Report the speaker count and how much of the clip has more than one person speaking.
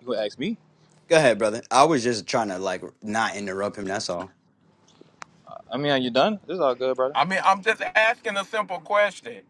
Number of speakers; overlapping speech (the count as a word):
three, no overlap